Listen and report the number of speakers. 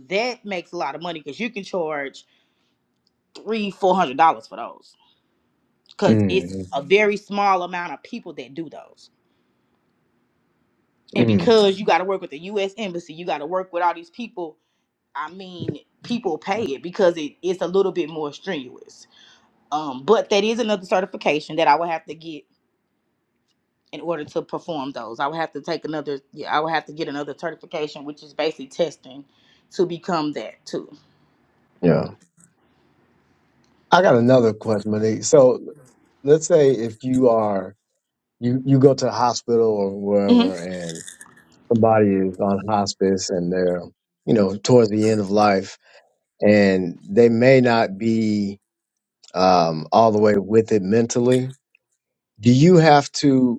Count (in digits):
2